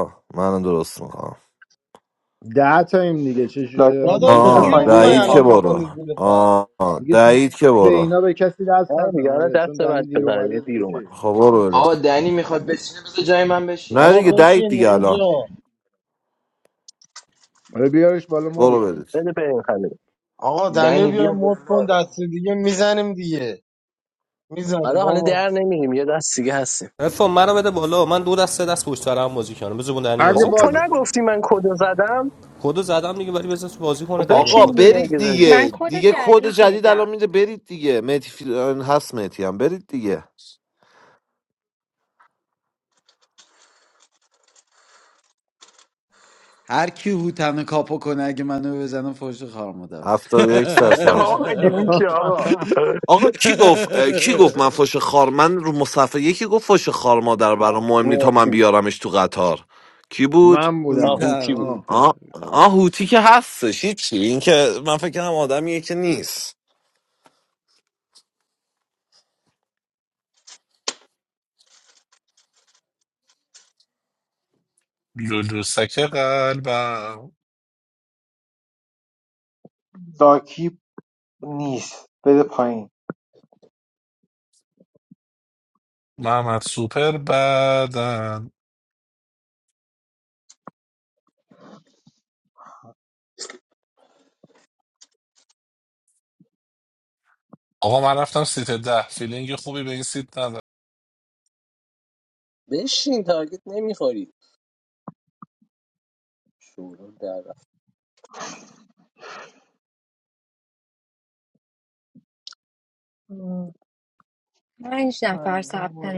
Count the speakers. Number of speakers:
10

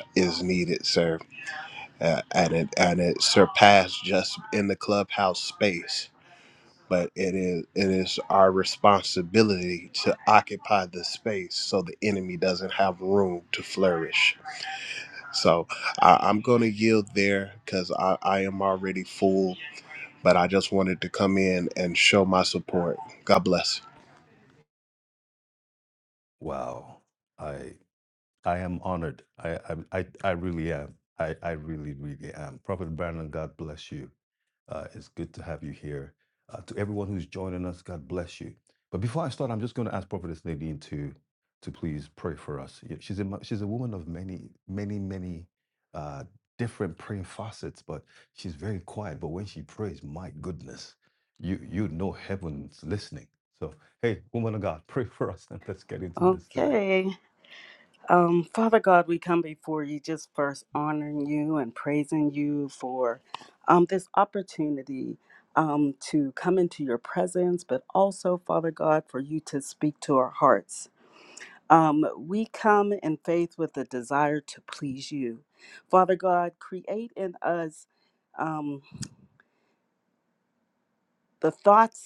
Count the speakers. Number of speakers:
3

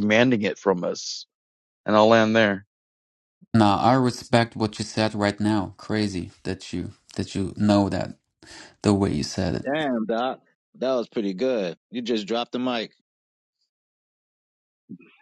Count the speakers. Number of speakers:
3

